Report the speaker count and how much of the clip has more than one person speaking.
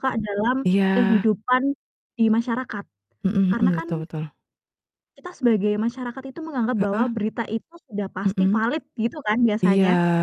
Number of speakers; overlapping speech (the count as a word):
two, about 14%